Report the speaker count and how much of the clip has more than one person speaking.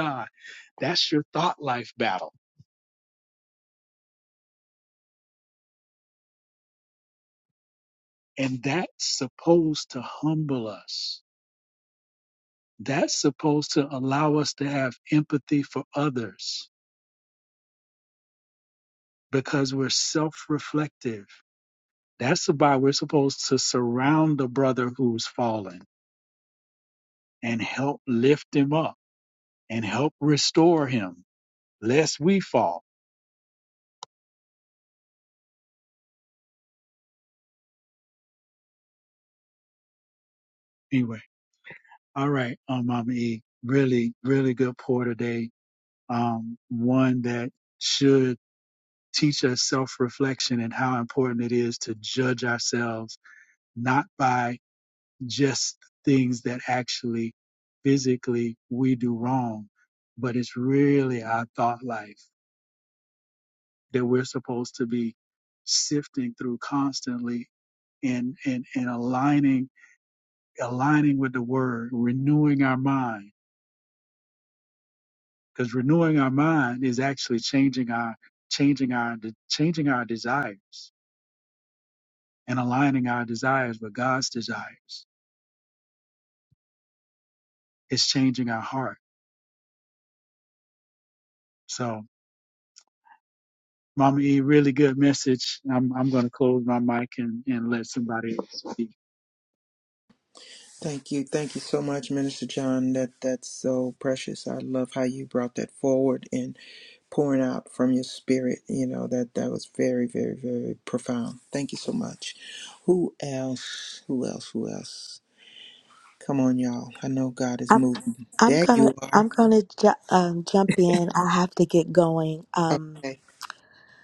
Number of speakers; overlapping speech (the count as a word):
three, about 1%